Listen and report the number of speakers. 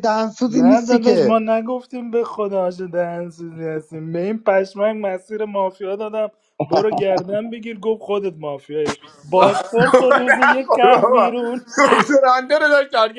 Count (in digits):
3